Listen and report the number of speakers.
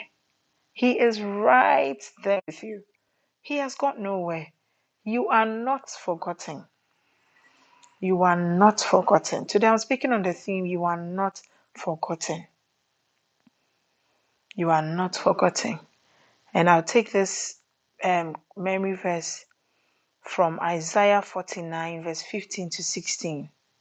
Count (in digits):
1